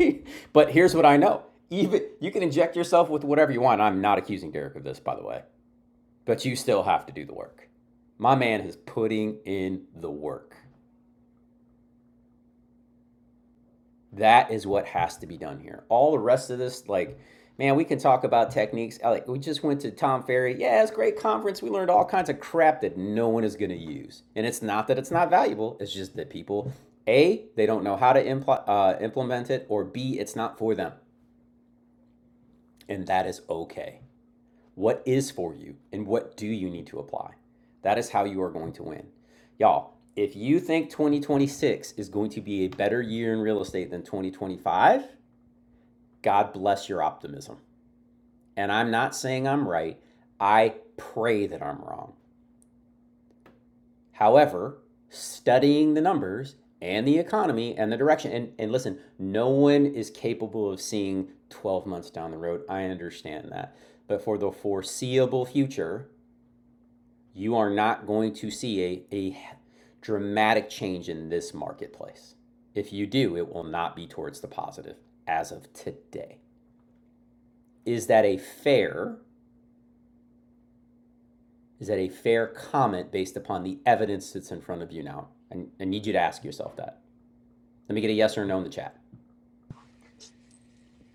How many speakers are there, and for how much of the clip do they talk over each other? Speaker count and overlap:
1, no overlap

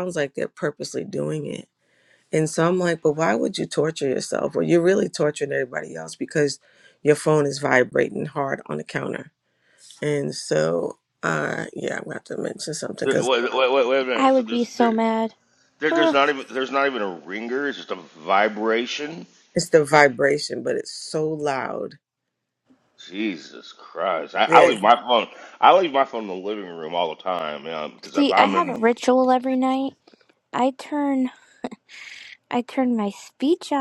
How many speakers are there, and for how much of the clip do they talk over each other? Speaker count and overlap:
3, about 7%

